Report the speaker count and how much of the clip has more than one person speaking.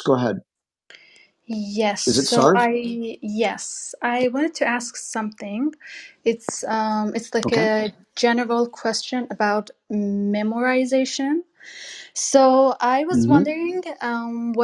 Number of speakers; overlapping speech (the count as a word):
two, about 8%